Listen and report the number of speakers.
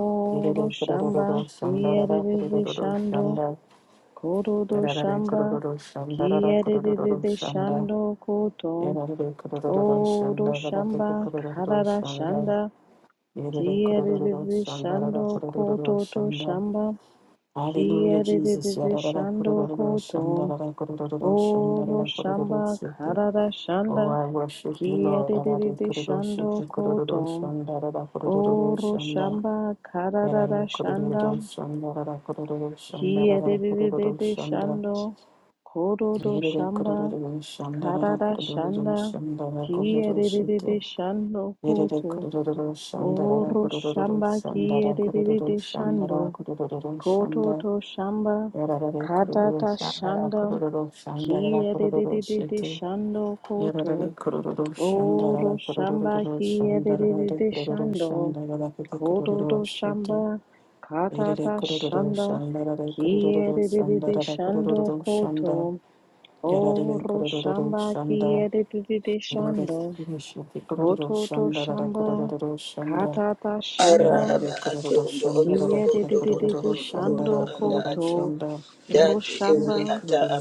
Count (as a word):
three